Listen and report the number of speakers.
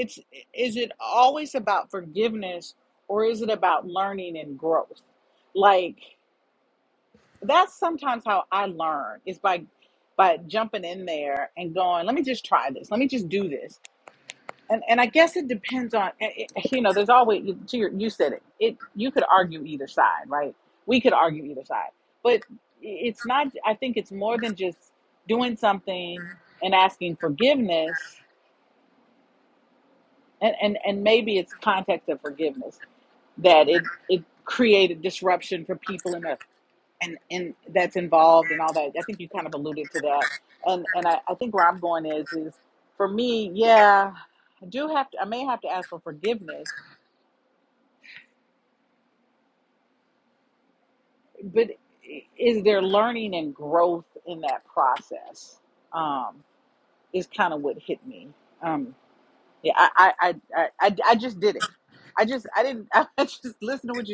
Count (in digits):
1